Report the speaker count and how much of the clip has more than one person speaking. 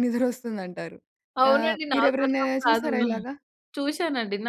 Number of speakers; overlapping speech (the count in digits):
2, about 33%